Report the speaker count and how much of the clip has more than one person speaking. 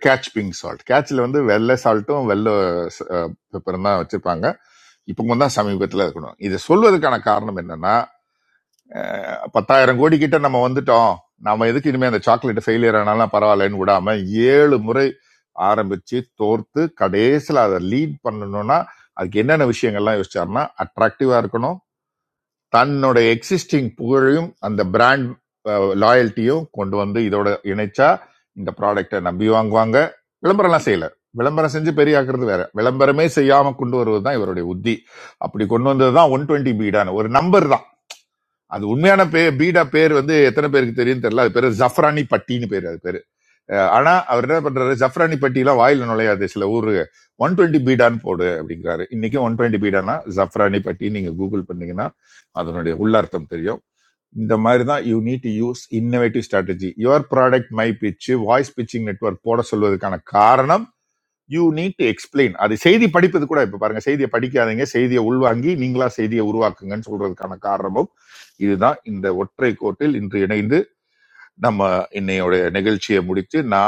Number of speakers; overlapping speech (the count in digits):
1, no overlap